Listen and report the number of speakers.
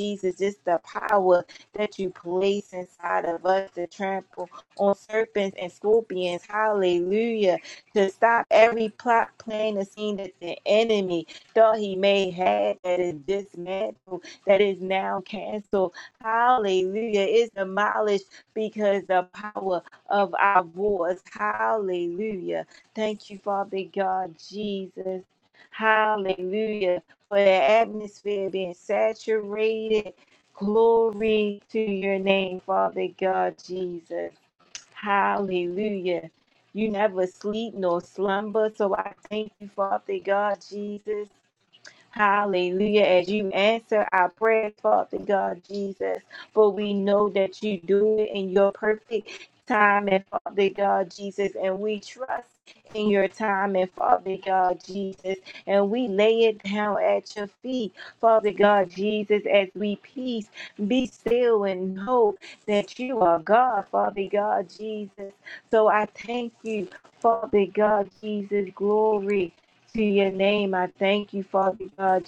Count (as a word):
one